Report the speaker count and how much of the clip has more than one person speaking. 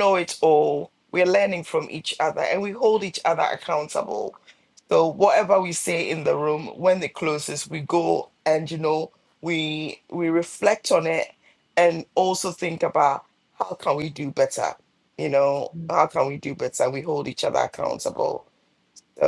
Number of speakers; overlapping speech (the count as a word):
one, no overlap